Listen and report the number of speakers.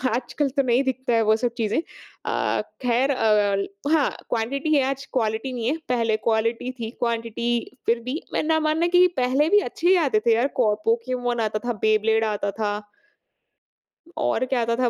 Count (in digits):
1